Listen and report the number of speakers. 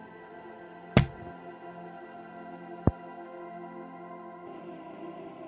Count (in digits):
0